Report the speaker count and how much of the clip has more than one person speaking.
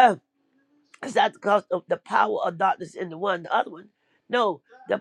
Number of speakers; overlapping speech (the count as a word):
one, no overlap